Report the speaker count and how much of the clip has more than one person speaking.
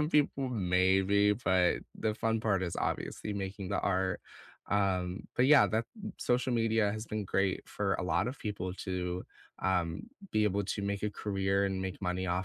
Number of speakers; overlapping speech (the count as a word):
one, no overlap